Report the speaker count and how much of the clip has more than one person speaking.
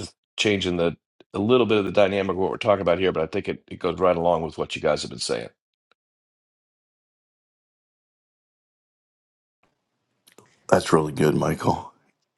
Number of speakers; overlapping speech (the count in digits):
2, no overlap